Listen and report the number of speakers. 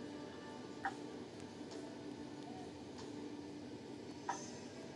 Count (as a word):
zero